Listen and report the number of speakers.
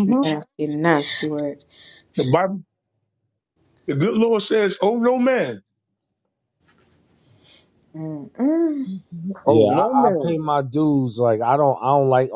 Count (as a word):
three